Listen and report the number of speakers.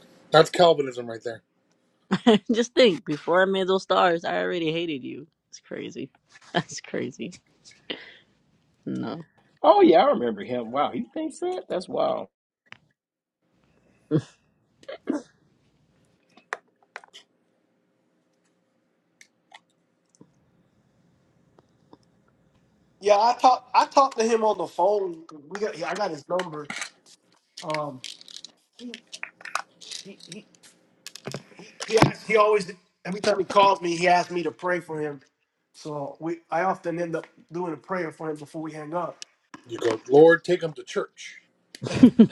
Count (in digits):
4